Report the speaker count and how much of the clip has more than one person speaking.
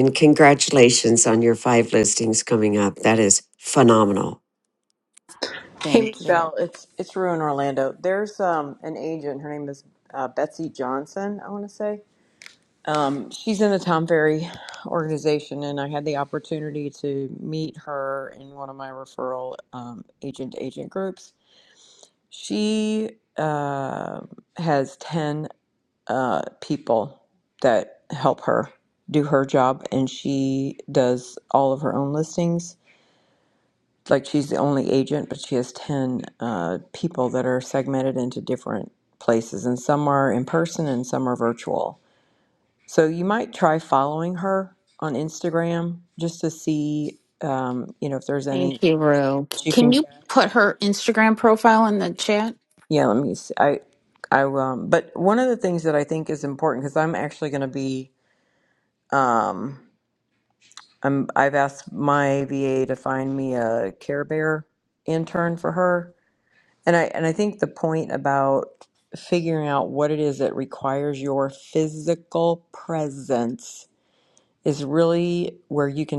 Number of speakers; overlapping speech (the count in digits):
3, about 2%